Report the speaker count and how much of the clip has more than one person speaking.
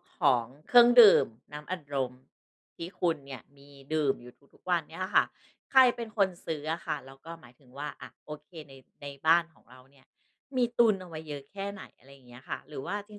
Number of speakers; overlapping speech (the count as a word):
one, no overlap